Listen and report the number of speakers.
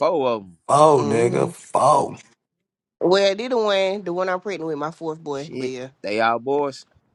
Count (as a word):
three